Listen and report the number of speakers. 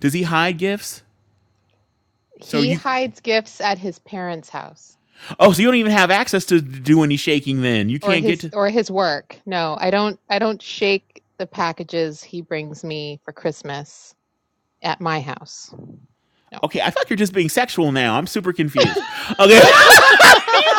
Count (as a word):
two